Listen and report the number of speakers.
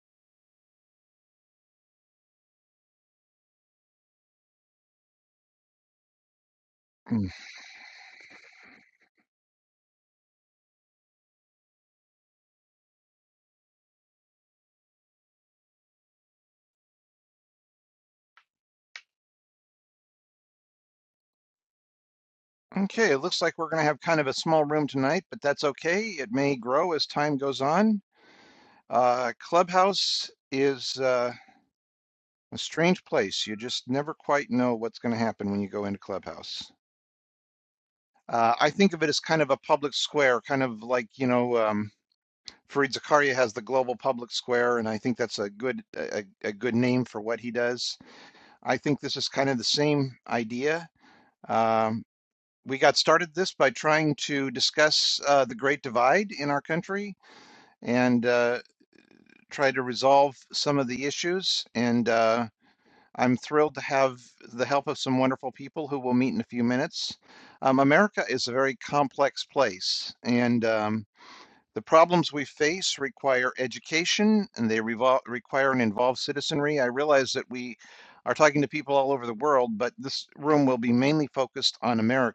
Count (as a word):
one